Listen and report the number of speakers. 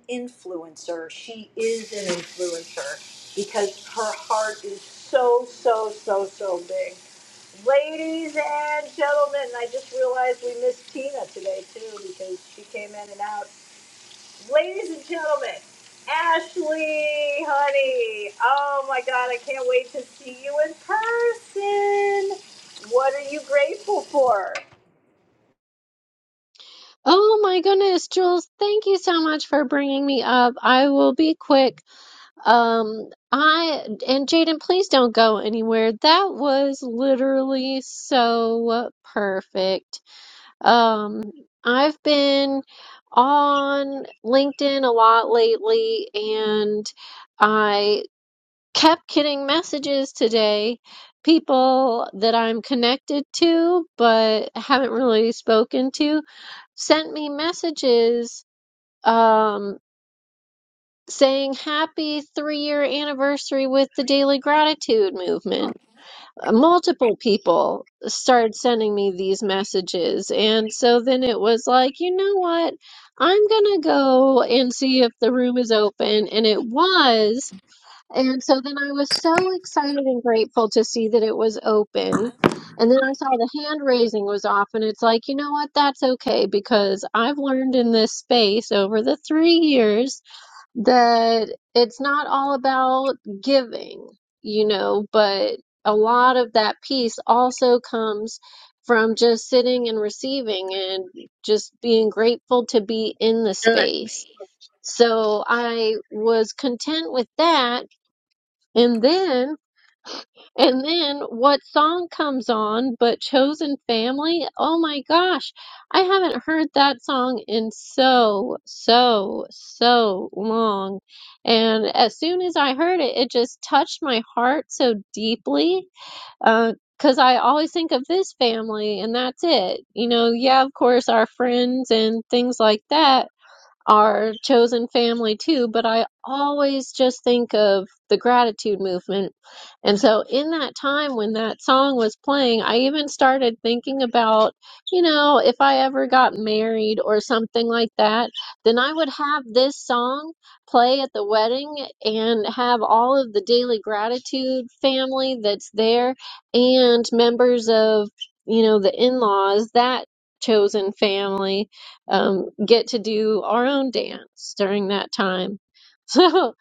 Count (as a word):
two